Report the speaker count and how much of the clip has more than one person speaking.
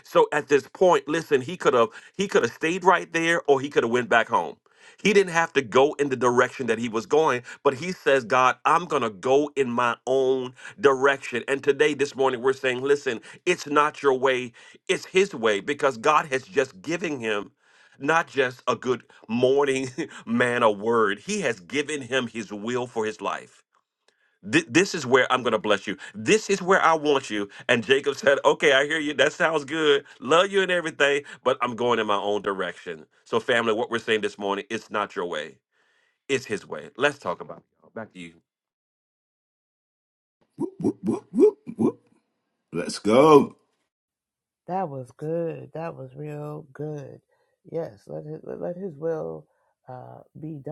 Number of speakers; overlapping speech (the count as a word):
three, no overlap